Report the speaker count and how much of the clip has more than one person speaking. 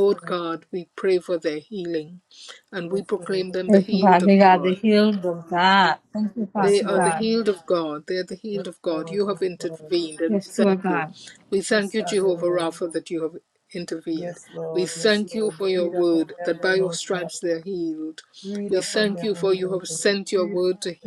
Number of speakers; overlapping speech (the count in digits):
3, about 51%